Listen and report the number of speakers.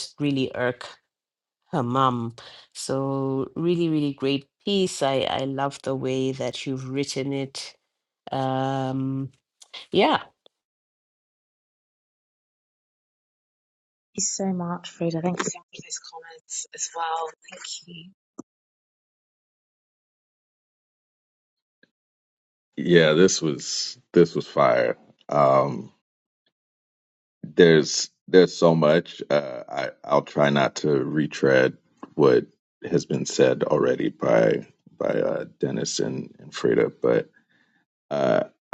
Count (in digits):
3